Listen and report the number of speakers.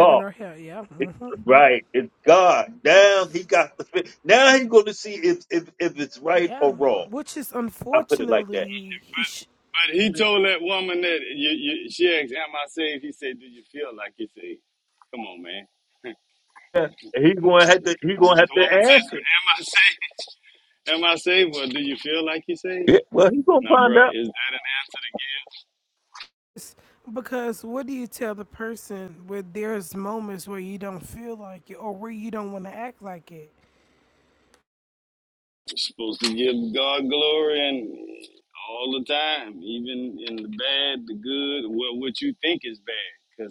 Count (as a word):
three